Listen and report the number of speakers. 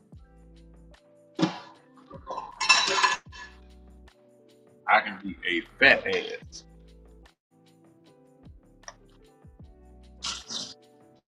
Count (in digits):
1